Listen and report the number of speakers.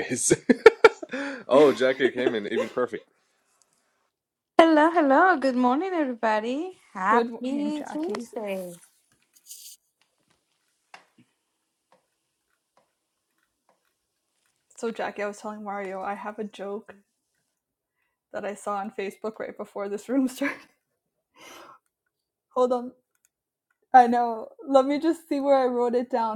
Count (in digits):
3